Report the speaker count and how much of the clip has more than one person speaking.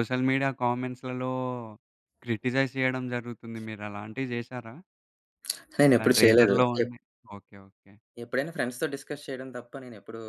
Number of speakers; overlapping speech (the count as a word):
two, about 10%